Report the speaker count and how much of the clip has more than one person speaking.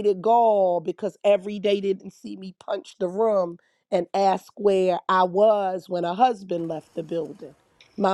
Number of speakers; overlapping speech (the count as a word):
one, no overlap